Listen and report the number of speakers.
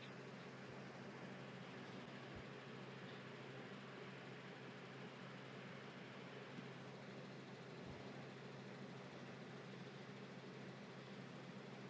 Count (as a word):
zero